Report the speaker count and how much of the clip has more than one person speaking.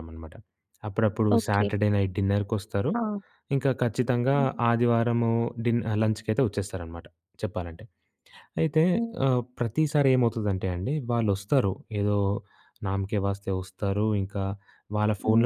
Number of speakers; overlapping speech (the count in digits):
2, about 6%